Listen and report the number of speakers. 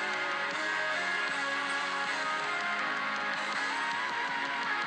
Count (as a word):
zero